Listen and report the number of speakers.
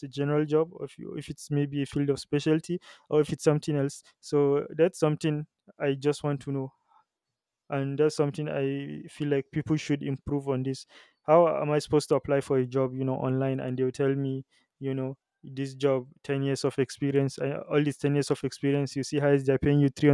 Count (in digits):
1